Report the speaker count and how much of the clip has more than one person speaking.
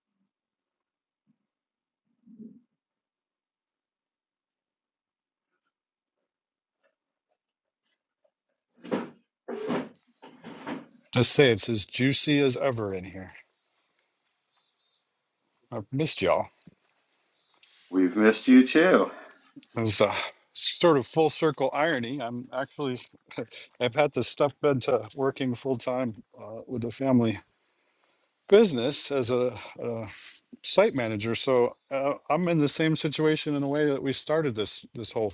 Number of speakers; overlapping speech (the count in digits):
2, no overlap